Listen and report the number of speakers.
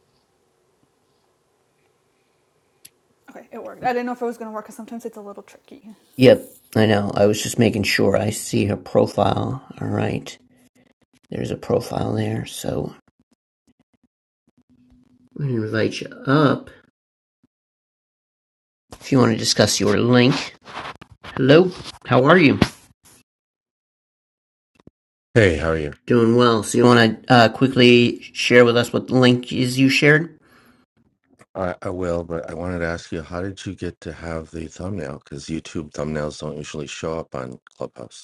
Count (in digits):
3